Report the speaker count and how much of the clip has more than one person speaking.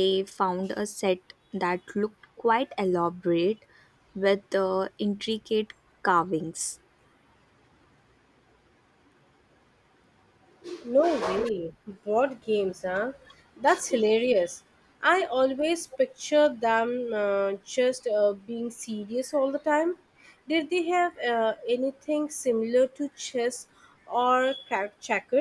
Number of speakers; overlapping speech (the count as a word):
two, no overlap